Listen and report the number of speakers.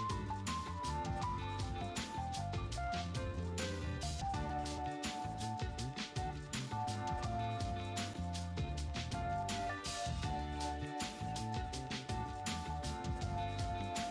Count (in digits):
0